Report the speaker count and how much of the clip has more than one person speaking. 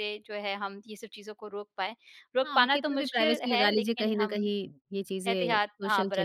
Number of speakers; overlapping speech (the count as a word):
two, about 49%